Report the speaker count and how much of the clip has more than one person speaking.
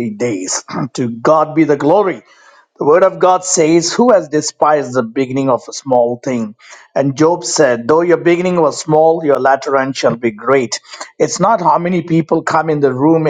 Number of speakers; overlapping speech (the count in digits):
1, no overlap